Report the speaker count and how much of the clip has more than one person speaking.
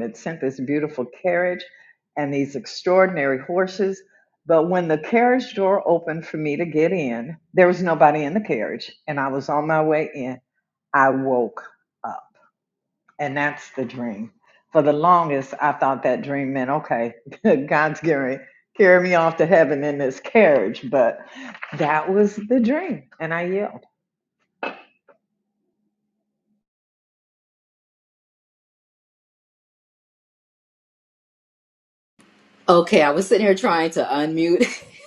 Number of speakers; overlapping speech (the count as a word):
two, no overlap